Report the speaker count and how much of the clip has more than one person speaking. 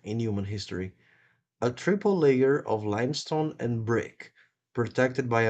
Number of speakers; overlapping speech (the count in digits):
1, no overlap